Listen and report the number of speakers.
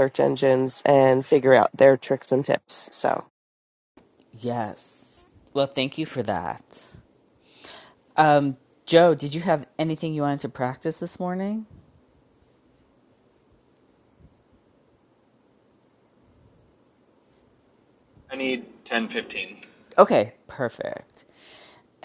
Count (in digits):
3